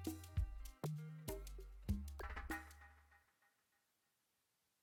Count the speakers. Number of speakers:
zero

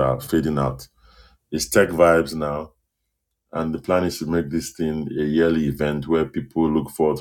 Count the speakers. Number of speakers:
one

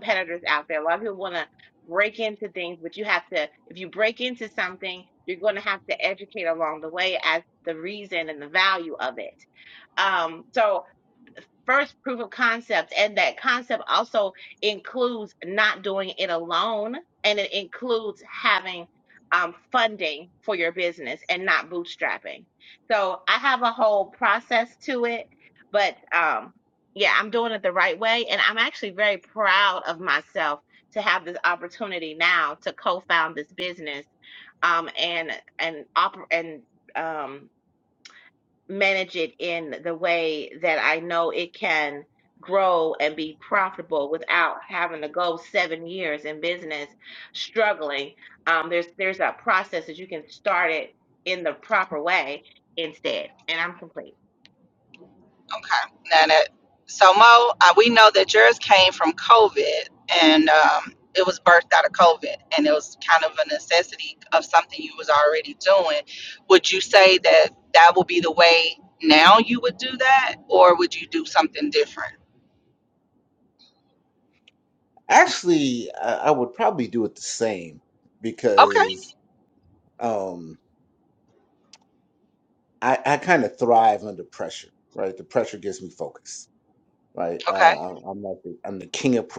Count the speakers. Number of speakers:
three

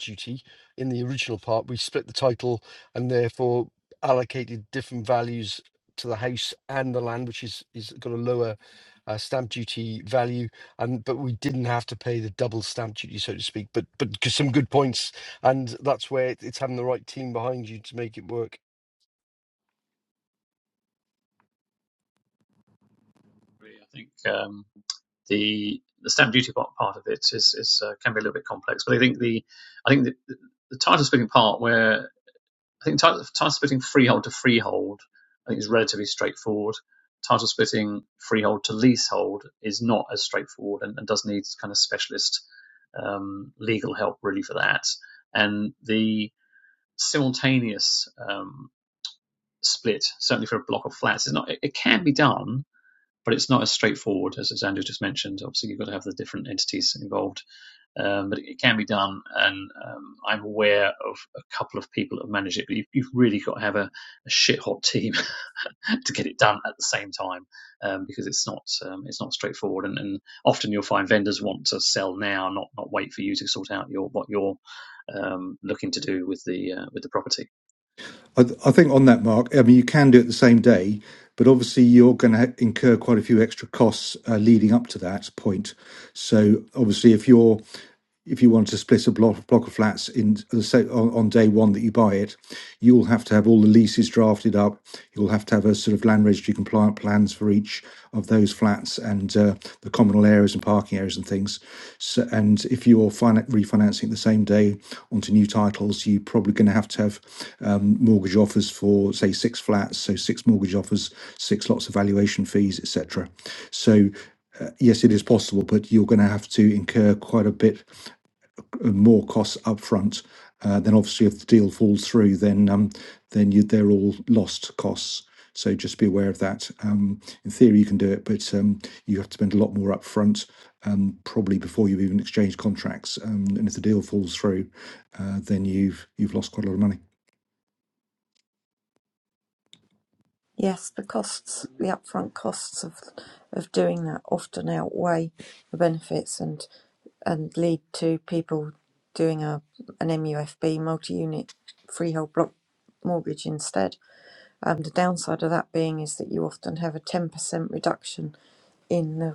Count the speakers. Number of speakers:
four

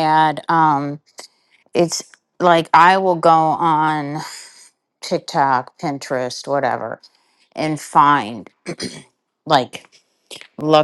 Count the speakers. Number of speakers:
one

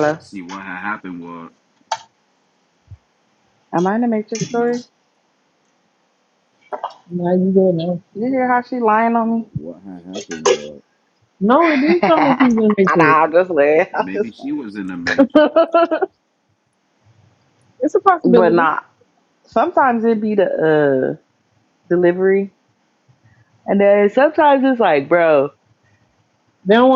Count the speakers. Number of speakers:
three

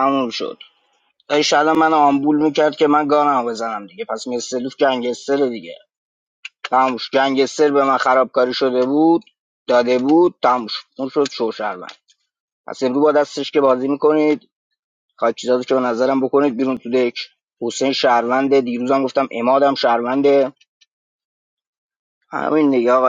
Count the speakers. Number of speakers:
one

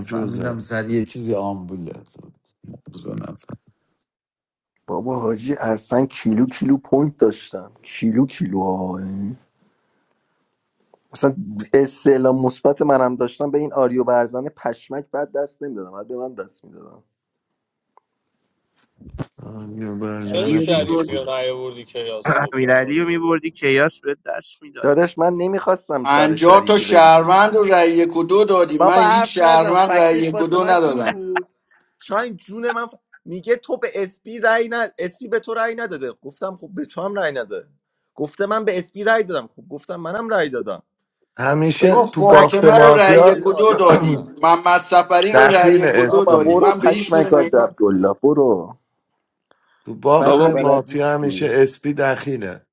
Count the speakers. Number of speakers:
six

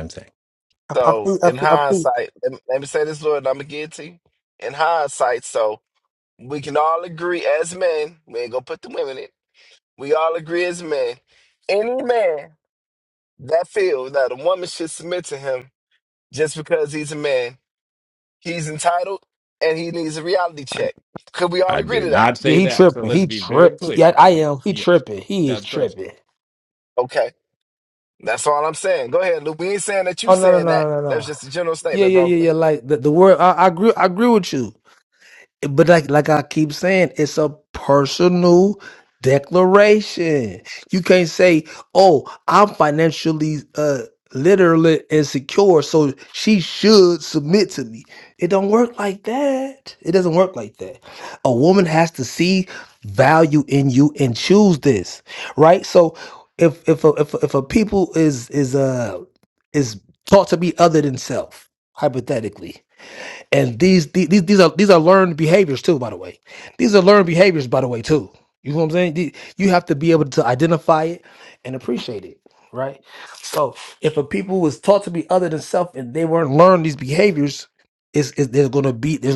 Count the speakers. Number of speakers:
three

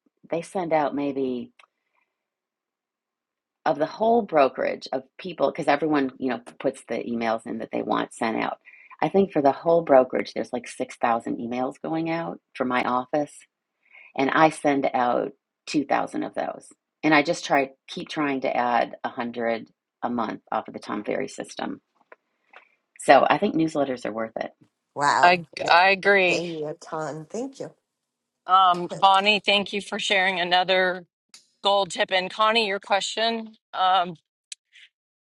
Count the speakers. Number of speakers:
three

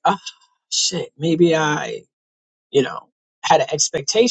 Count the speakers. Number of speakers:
one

